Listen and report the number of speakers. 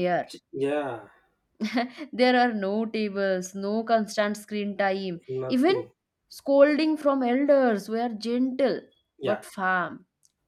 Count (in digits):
2